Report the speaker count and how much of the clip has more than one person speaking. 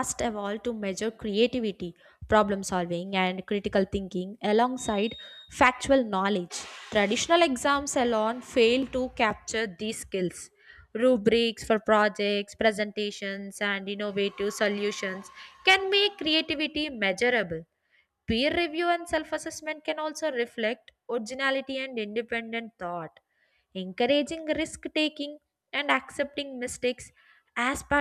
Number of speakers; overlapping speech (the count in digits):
1, no overlap